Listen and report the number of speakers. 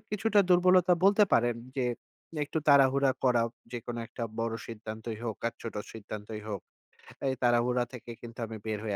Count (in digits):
1